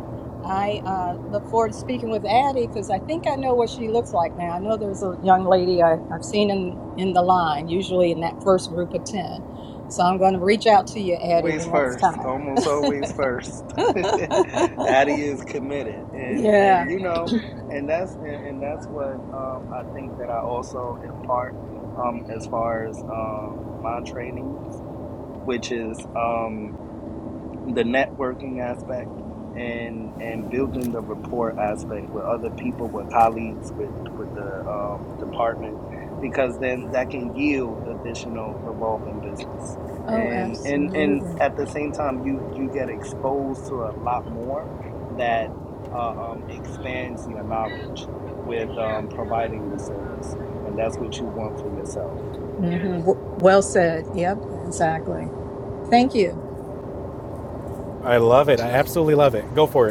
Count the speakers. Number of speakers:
3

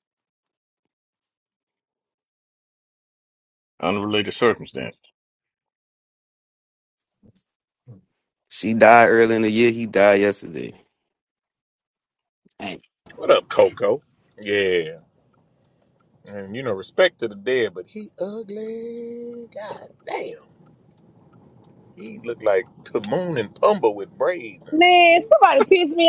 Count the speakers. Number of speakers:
4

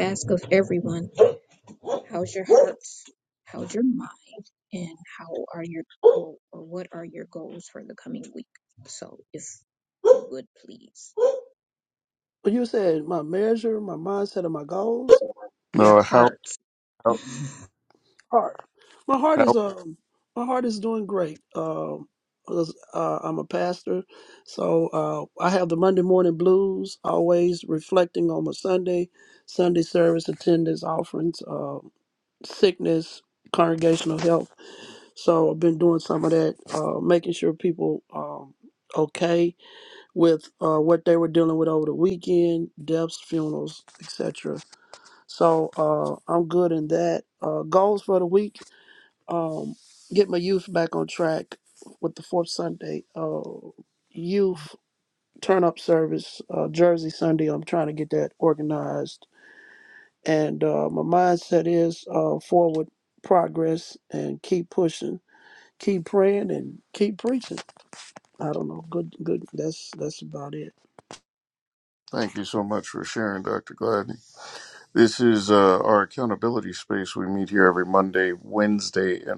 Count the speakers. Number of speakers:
3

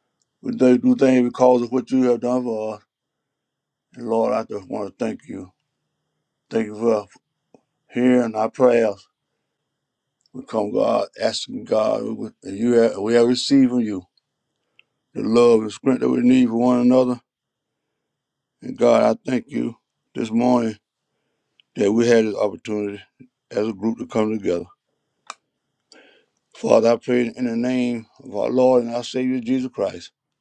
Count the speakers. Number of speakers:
1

